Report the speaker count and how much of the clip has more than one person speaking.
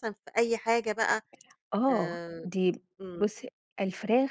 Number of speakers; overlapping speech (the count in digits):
2, about 16%